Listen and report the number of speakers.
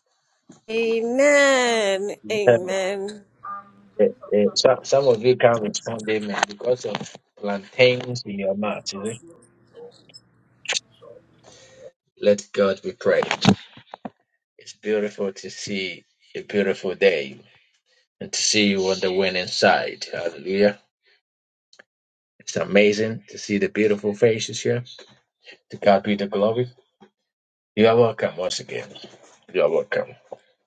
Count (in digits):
2